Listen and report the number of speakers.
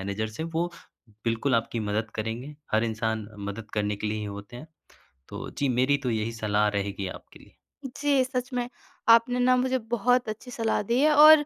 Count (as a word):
two